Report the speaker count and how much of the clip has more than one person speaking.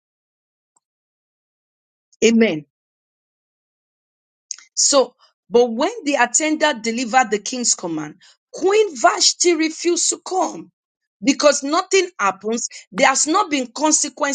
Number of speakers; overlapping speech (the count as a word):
one, no overlap